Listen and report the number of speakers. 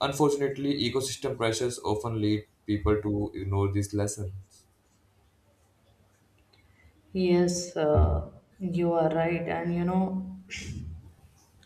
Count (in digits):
2